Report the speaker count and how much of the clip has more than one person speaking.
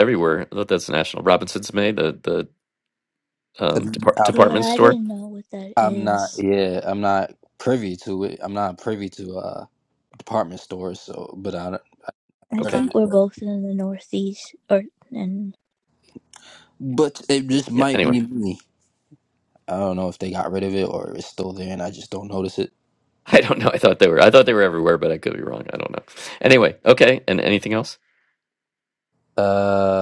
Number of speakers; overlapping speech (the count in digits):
3, about 8%